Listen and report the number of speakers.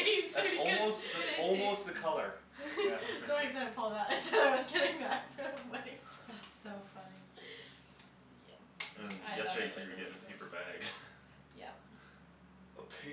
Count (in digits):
4